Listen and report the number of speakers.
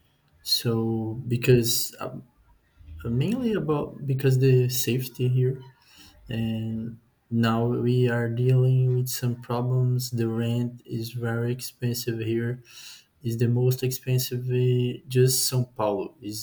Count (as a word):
one